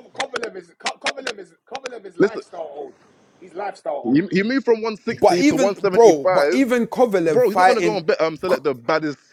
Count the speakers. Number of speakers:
3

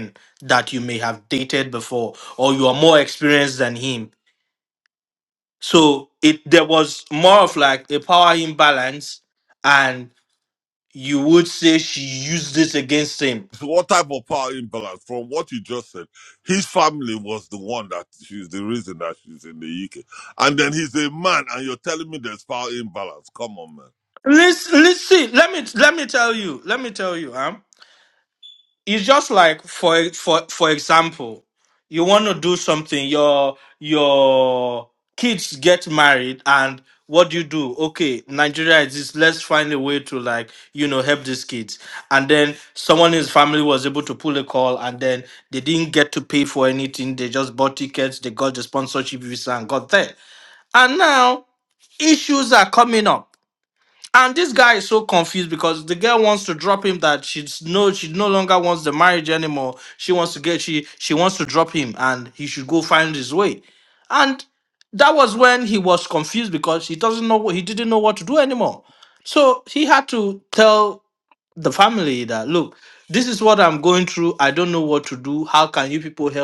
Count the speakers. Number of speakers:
2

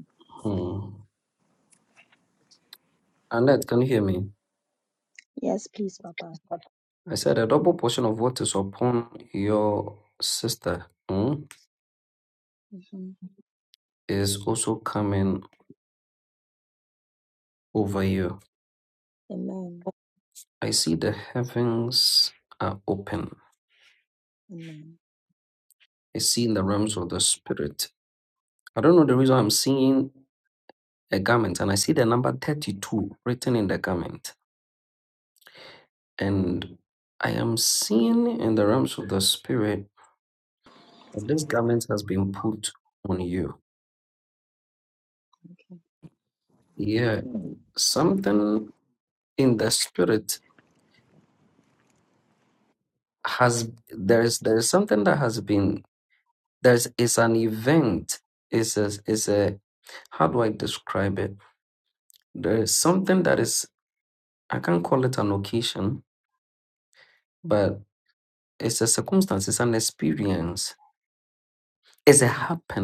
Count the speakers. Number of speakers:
2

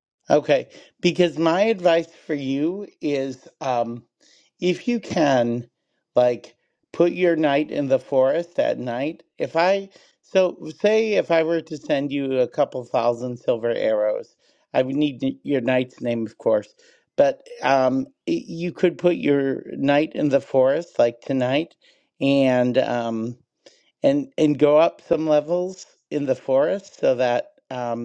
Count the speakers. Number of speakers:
1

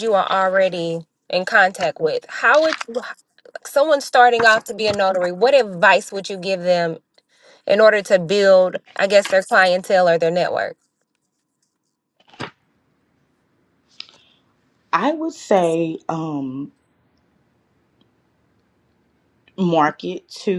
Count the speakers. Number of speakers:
2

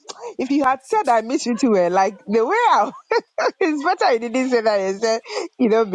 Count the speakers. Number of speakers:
1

